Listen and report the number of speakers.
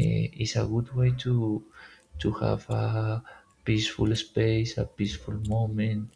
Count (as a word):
one